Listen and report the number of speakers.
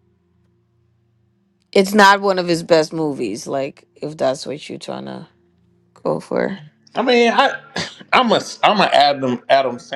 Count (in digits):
2